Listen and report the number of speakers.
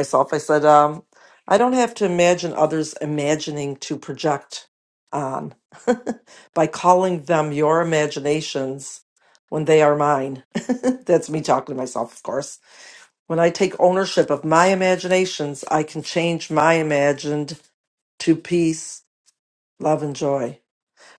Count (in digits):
1